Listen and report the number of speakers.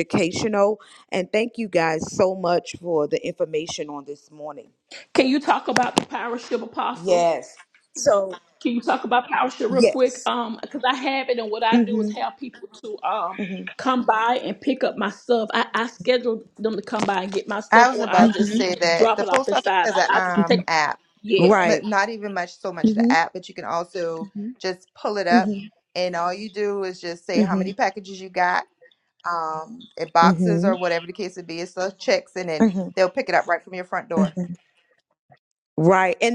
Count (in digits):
3